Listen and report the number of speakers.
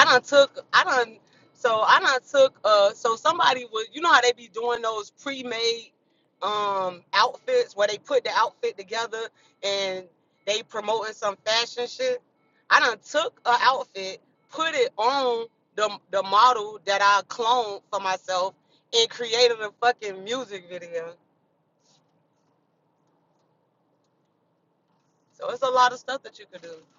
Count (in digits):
1